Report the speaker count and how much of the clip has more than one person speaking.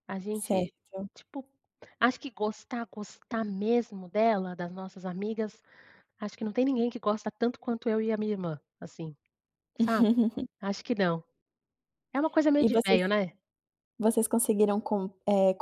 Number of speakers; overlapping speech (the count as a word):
two, about 4%